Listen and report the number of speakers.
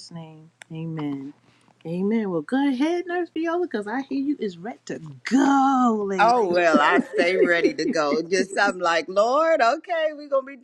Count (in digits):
2